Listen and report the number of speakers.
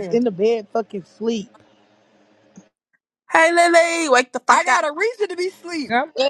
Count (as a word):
three